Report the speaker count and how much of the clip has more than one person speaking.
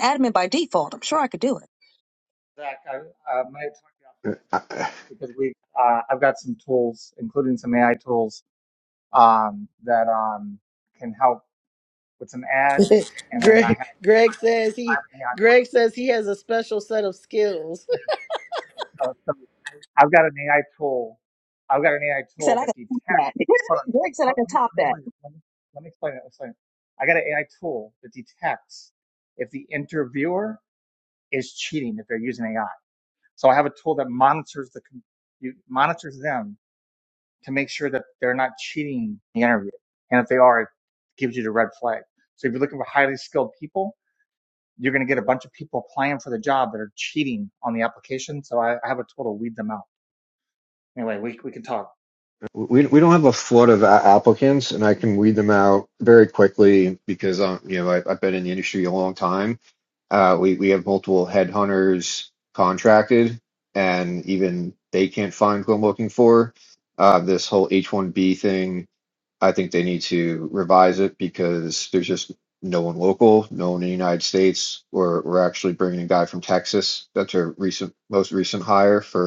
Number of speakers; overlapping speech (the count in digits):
4, about 3%